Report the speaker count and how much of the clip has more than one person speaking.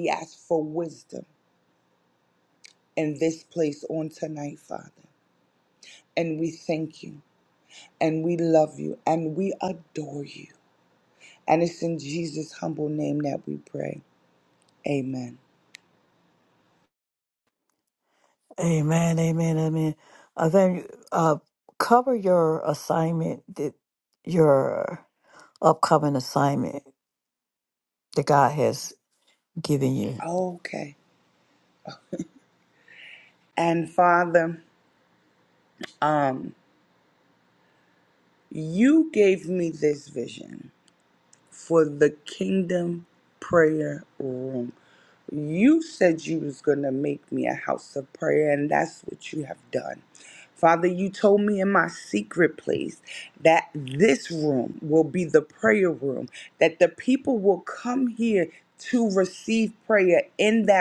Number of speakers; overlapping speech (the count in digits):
2, under 1%